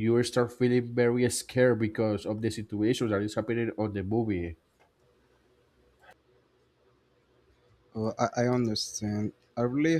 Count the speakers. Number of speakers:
2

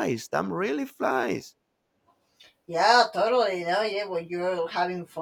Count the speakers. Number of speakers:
2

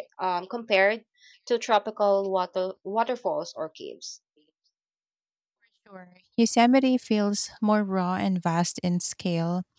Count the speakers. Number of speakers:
2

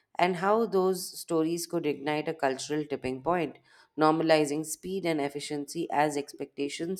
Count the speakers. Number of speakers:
1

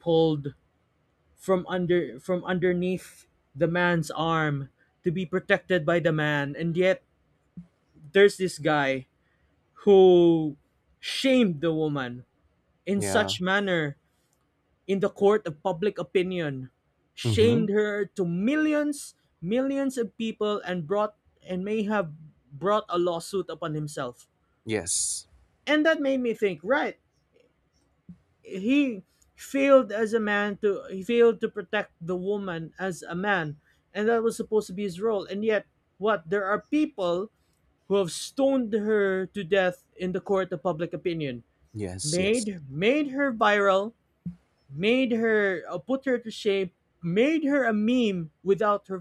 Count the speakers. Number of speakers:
2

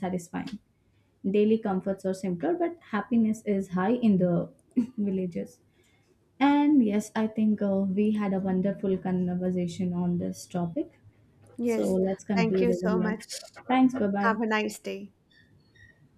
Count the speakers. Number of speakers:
2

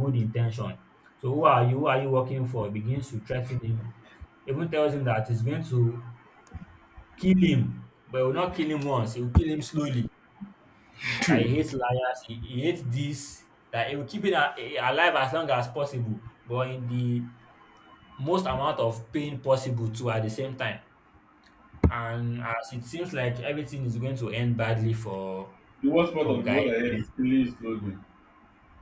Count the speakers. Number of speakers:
2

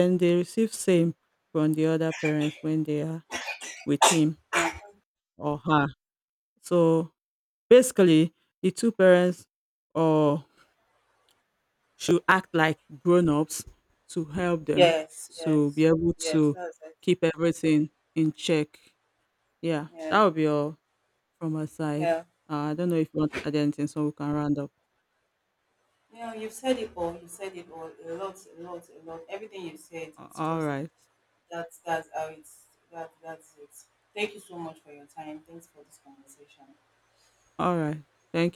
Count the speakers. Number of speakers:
2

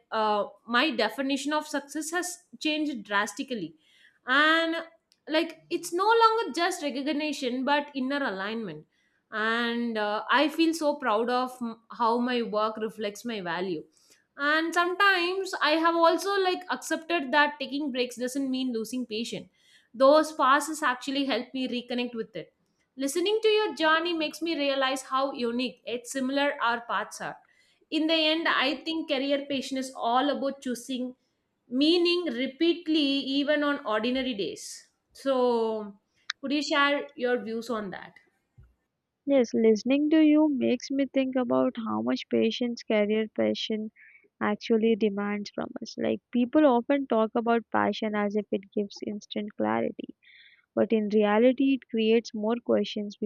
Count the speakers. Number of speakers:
2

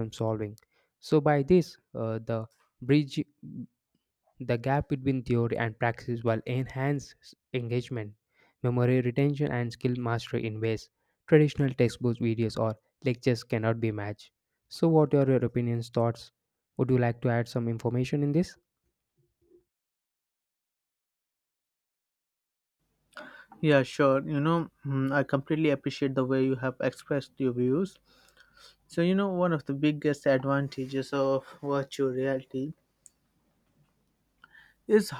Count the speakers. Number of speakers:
2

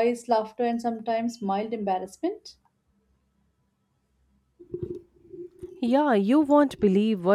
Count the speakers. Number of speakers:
2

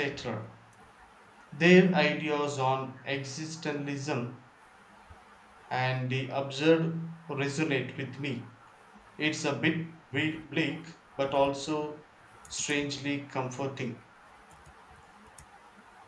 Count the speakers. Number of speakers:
1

